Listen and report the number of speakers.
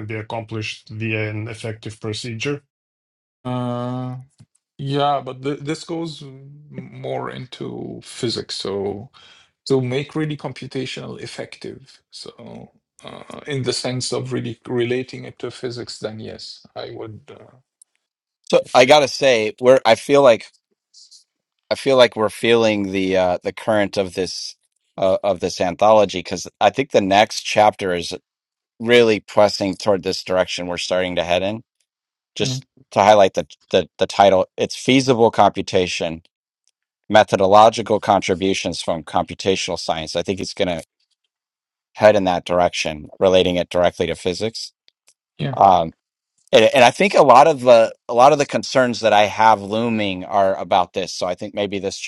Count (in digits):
3